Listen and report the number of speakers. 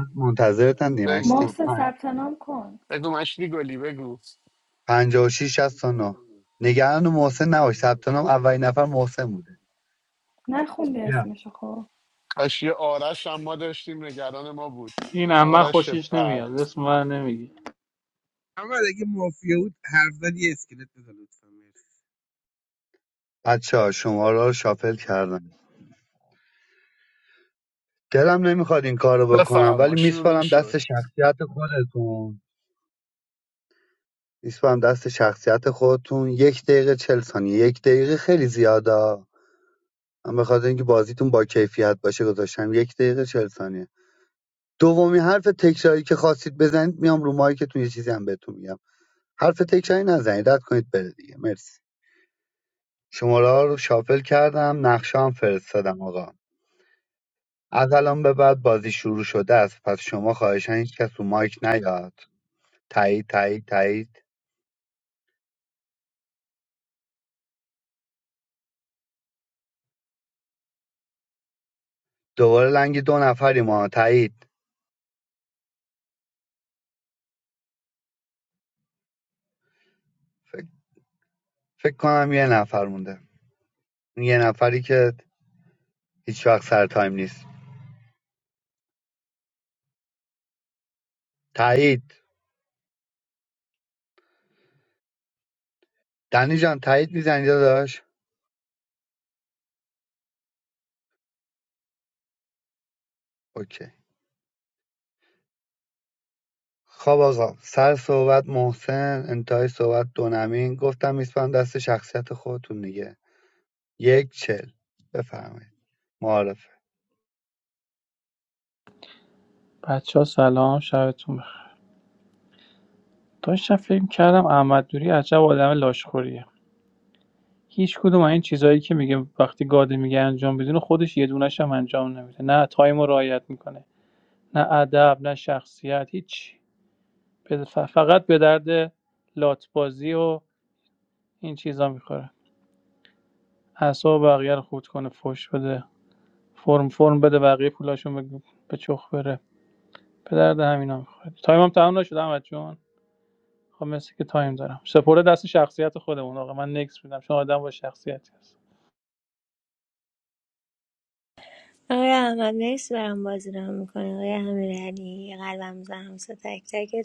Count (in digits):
6